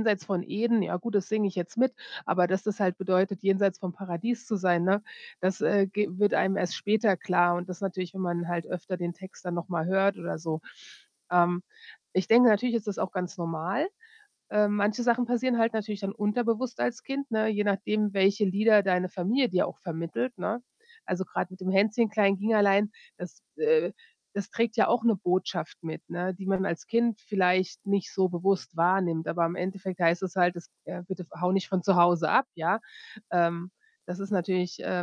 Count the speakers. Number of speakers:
1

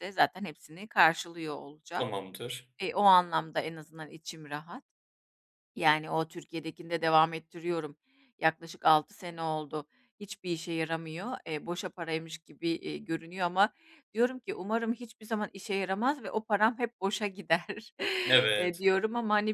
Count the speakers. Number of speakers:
2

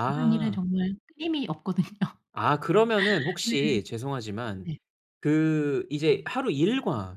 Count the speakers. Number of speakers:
2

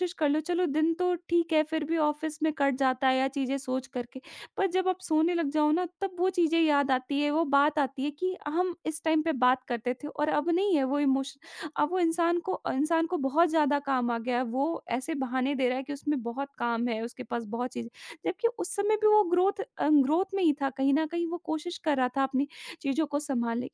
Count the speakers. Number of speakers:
1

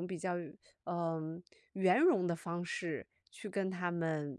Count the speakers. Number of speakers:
1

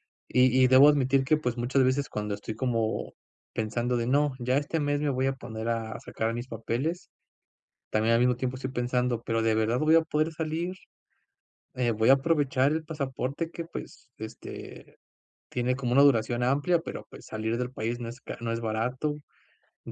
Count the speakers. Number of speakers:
1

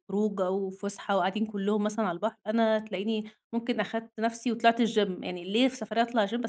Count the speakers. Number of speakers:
1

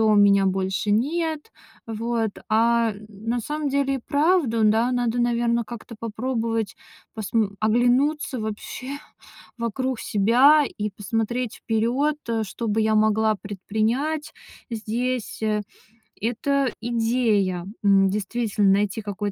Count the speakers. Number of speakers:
1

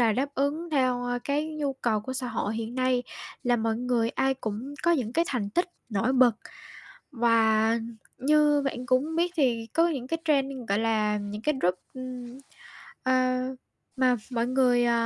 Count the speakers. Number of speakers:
1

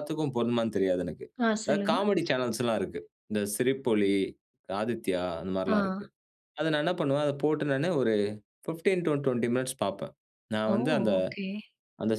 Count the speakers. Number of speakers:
2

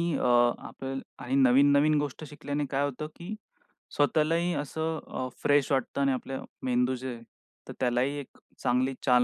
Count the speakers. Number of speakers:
1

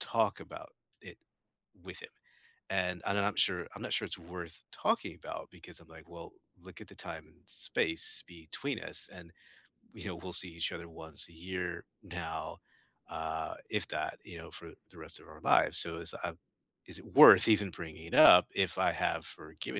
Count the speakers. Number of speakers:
1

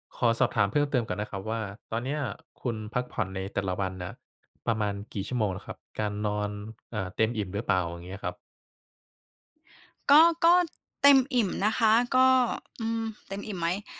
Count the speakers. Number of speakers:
2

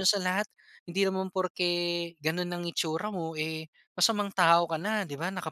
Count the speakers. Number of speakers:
1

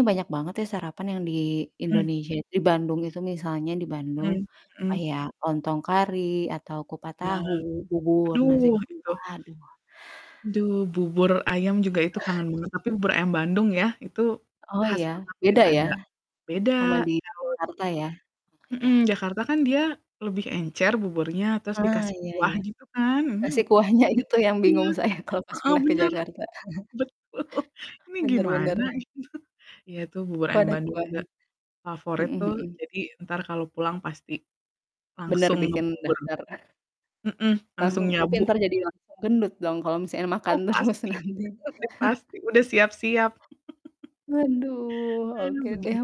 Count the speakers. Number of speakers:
2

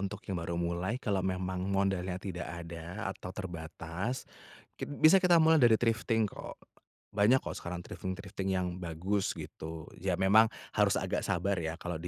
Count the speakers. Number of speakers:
1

